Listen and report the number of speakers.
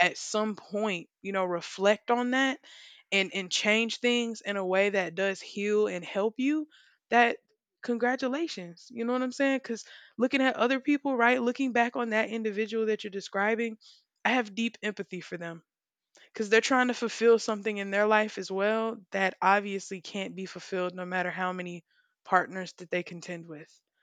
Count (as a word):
one